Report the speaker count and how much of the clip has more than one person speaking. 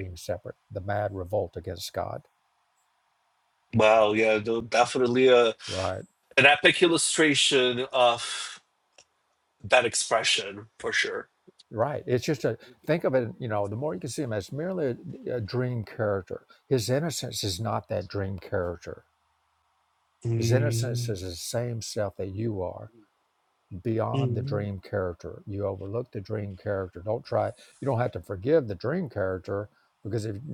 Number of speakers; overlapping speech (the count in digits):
2, about 3%